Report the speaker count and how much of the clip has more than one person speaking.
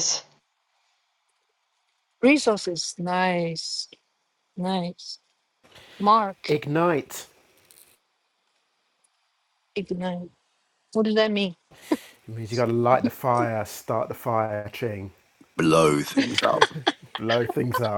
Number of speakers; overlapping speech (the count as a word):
three, under 1%